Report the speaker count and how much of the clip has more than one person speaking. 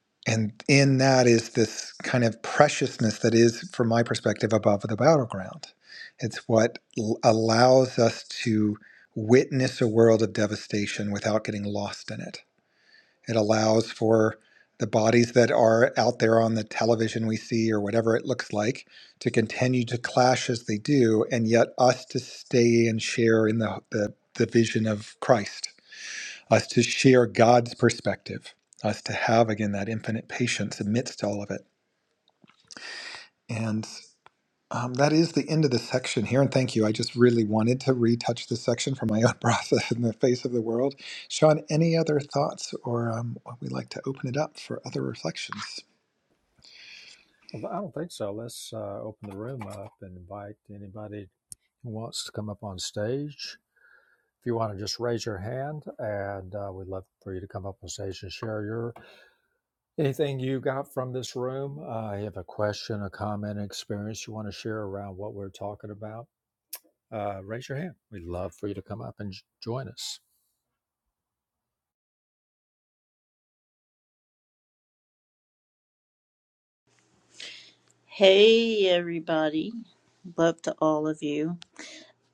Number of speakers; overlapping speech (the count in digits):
3, no overlap